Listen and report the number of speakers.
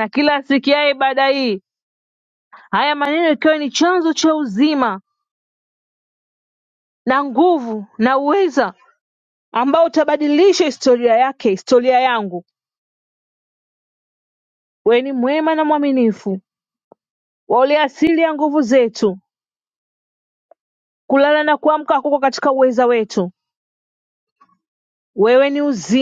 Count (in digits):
1